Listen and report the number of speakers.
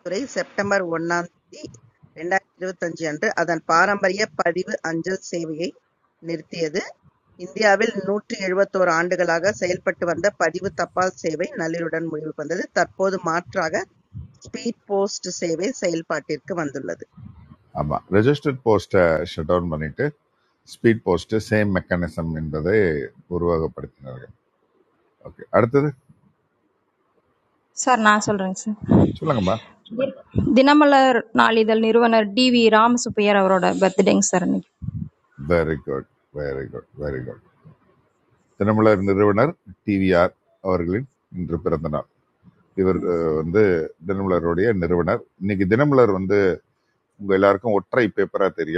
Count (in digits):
3